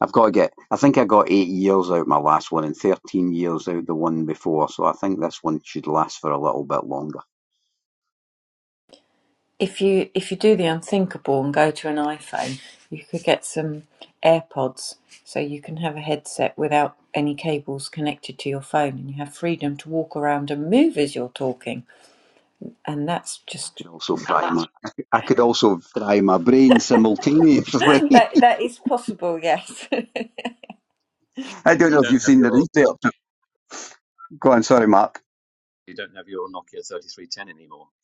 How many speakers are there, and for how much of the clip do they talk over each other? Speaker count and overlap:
three, about 2%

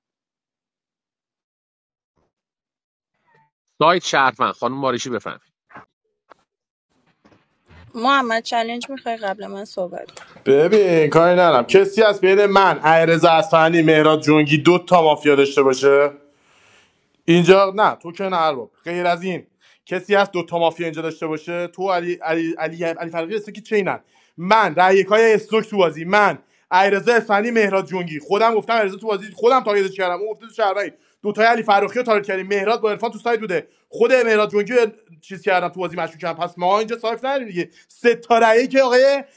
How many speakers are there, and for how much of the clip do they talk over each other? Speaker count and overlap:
three, no overlap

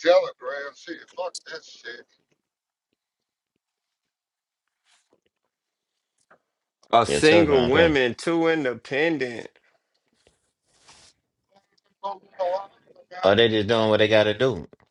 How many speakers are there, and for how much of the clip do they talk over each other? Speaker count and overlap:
three, about 7%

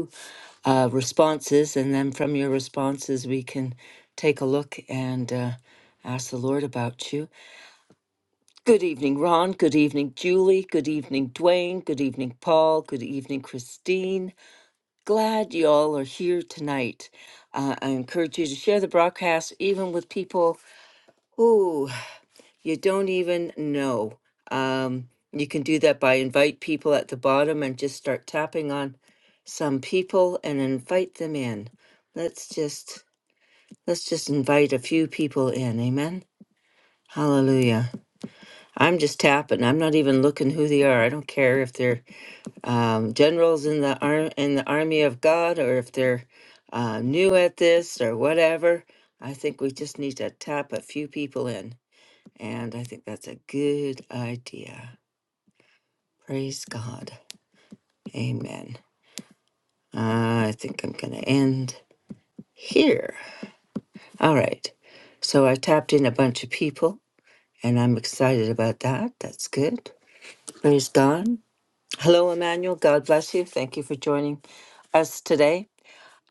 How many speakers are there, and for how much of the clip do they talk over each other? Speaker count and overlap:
one, no overlap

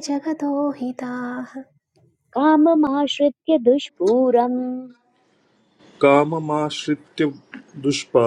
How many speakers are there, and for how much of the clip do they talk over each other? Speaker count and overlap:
three, no overlap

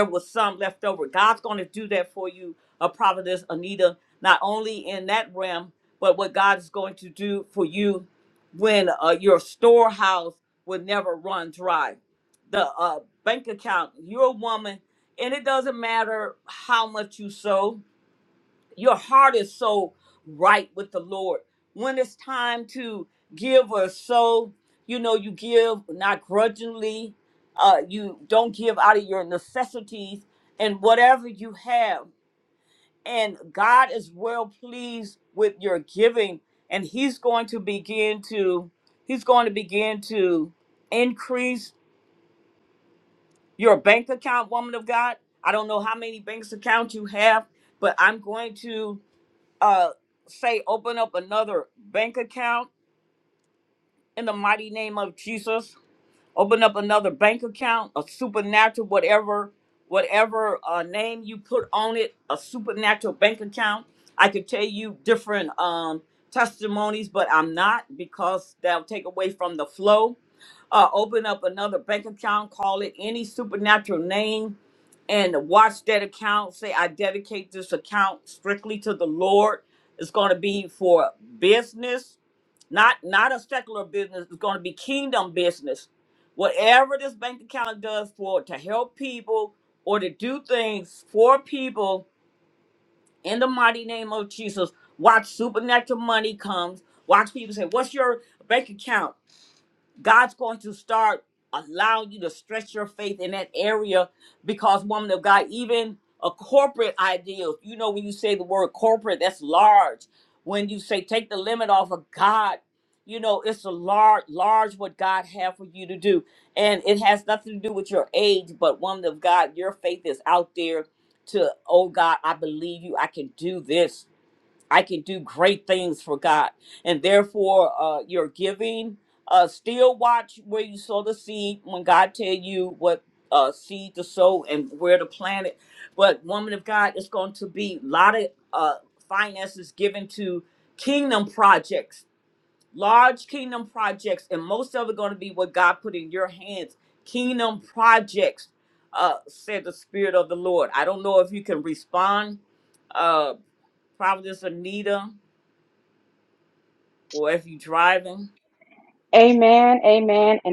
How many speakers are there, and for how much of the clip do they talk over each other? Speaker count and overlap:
two, no overlap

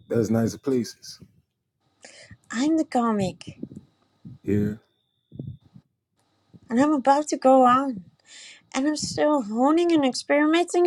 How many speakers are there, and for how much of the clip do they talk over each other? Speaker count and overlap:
two, no overlap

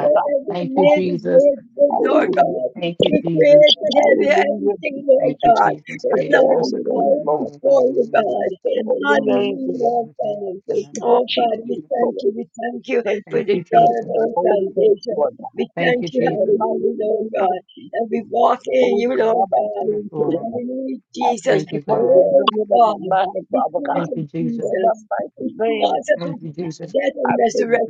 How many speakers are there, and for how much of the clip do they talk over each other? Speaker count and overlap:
three, about 71%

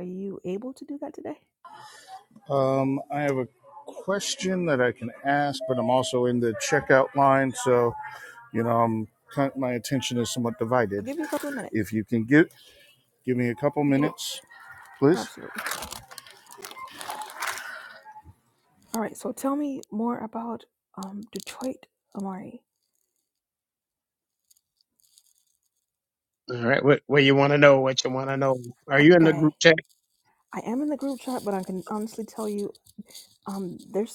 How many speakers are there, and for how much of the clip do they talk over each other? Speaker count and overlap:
three, about 3%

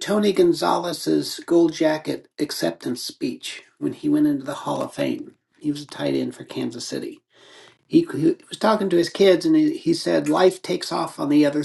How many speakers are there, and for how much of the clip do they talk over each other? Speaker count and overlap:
one, no overlap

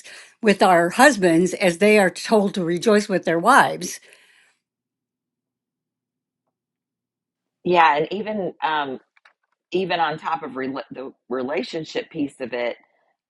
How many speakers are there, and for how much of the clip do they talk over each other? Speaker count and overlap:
two, no overlap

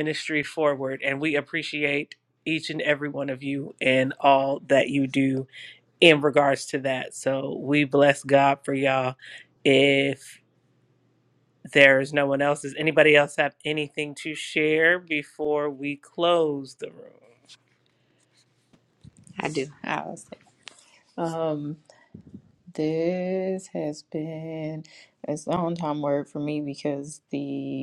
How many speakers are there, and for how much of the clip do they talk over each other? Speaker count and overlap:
two, no overlap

